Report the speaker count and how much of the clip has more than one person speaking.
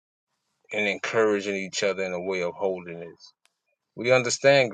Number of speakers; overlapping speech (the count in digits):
1, no overlap